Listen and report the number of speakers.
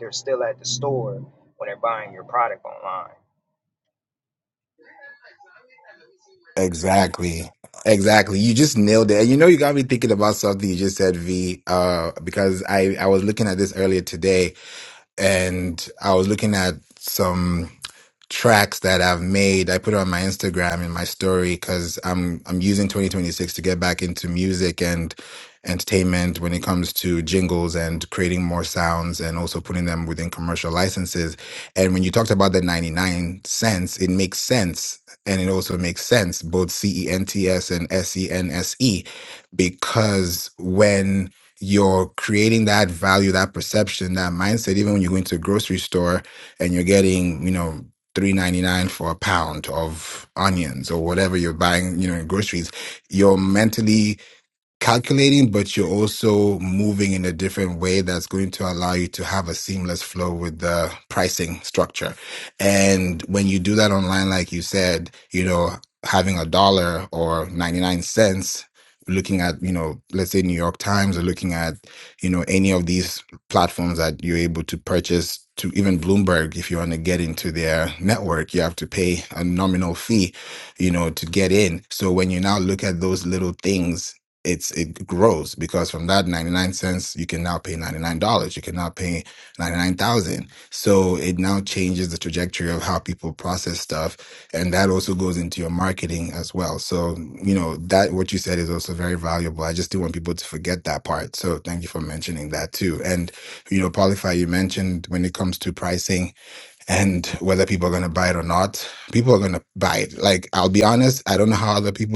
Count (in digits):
2